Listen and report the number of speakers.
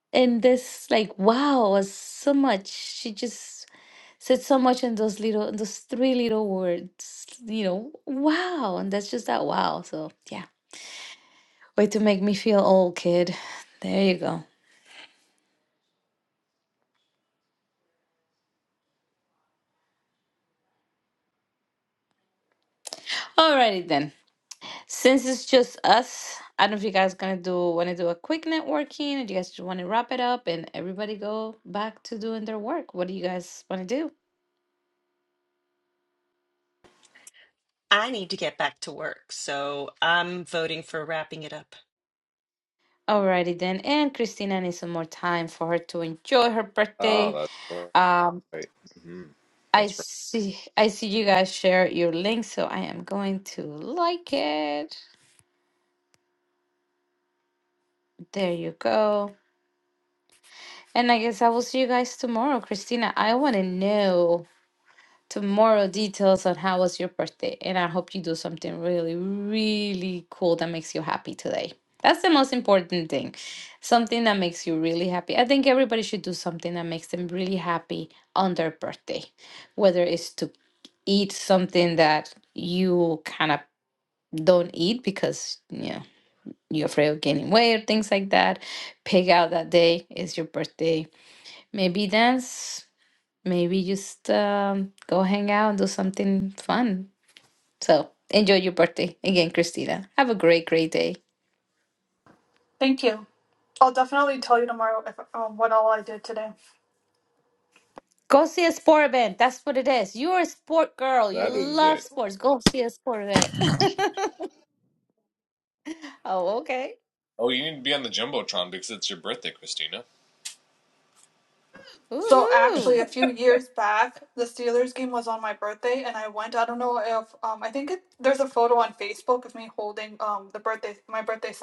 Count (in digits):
4